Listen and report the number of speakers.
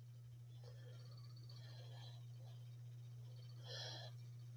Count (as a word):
zero